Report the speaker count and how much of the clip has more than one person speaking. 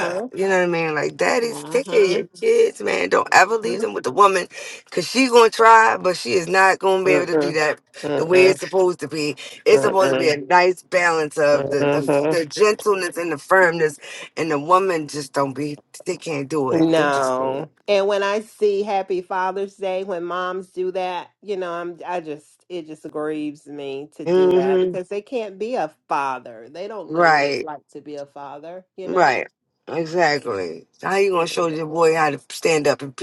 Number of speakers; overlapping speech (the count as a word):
two, about 19%